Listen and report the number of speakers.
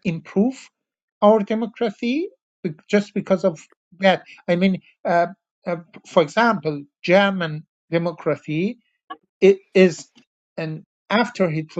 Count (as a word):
one